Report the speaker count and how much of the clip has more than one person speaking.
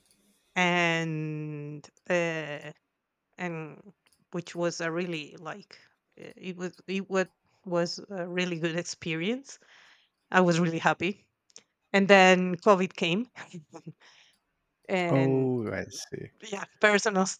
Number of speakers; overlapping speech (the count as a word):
two, about 2%